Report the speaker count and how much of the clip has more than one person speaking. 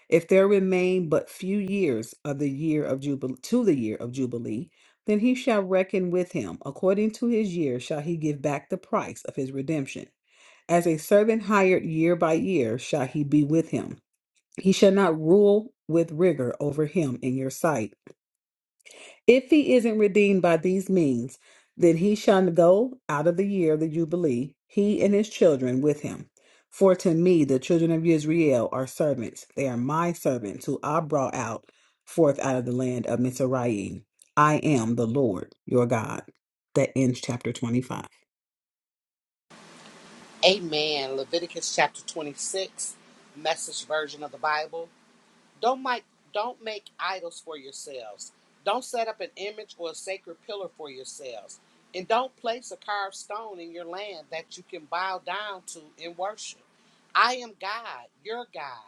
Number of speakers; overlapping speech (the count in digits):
2, no overlap